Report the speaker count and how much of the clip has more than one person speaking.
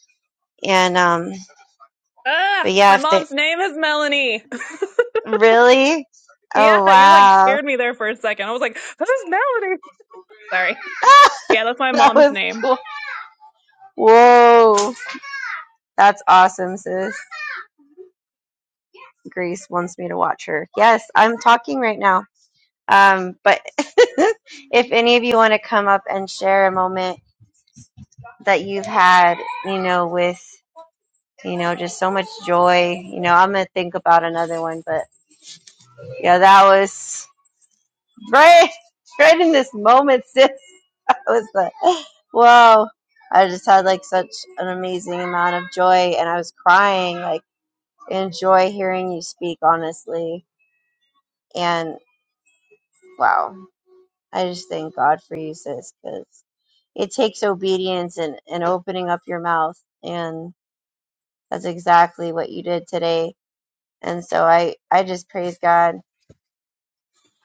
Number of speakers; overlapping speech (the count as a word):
two, about 3%